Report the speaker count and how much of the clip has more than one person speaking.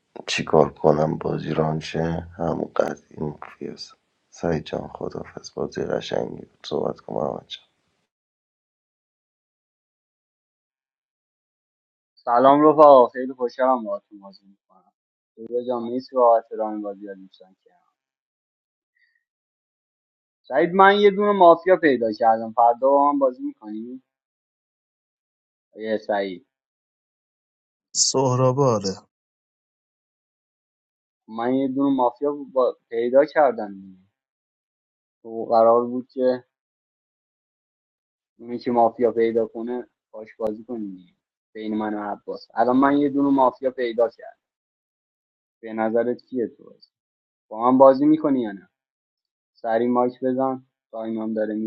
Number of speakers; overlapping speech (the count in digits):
3, no overlap